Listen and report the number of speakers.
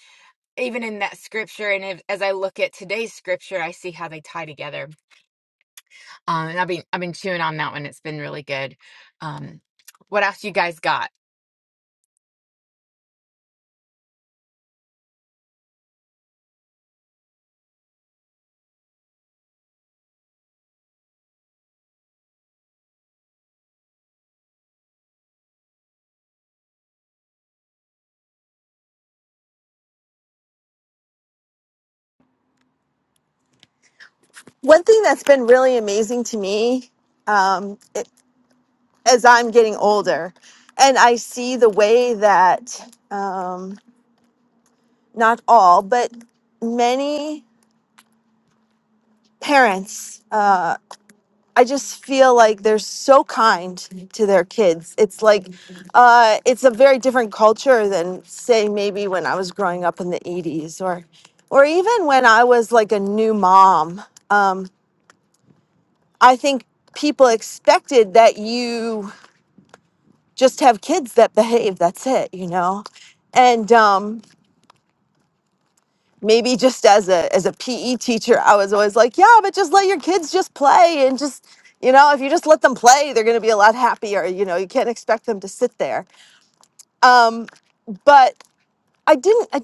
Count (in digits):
2